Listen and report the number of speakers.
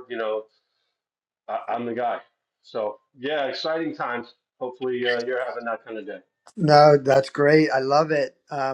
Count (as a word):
two